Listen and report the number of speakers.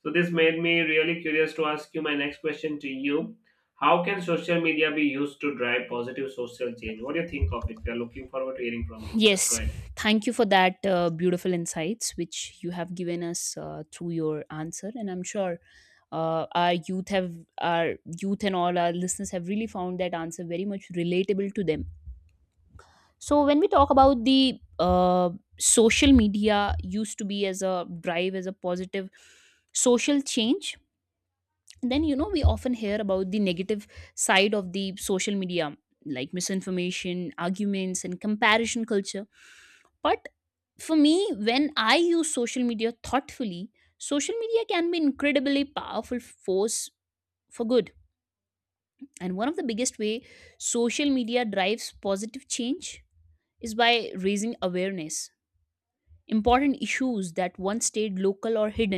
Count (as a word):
two